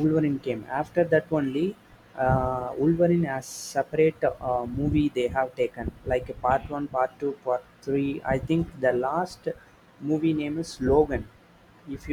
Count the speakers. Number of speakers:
1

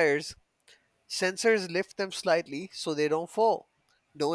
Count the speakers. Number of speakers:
1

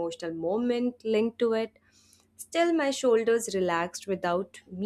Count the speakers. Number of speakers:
1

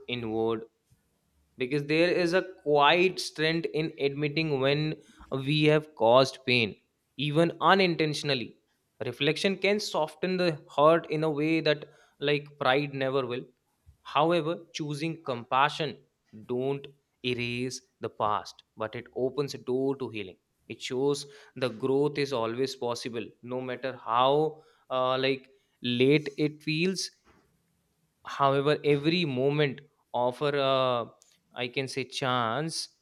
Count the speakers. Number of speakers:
1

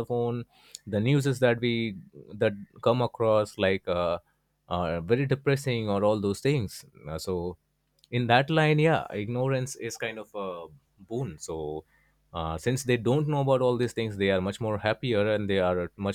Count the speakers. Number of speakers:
1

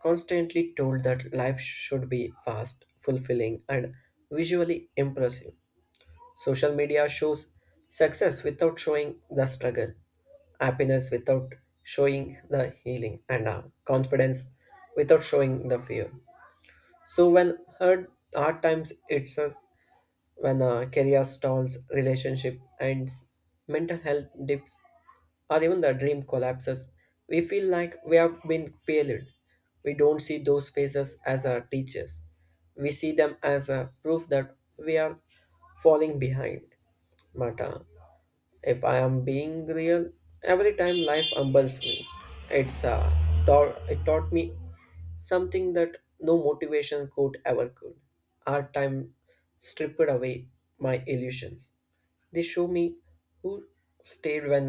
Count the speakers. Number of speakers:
1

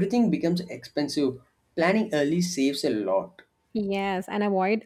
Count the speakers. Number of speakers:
2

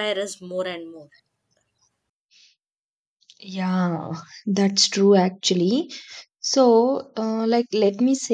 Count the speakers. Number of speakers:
2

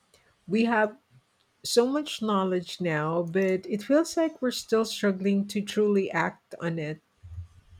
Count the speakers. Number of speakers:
1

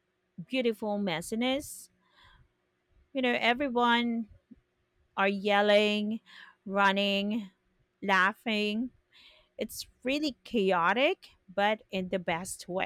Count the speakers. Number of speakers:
1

